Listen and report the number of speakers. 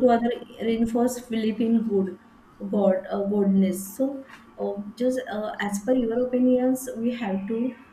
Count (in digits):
1